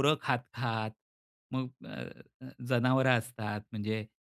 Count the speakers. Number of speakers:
one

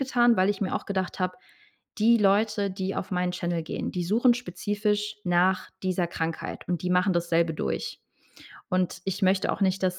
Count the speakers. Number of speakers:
one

